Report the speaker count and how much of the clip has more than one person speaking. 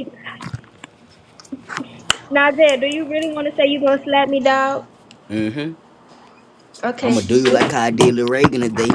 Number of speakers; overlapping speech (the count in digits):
2, about 2%